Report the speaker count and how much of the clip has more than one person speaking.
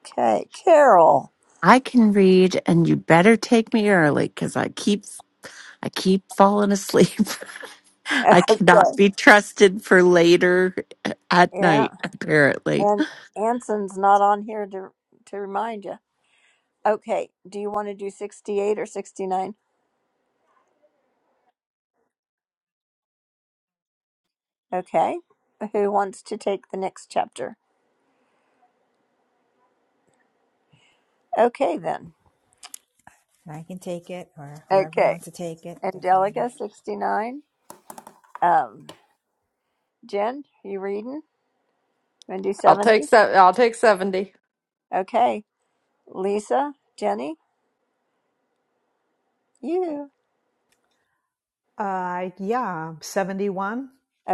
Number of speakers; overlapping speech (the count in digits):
5, about 4%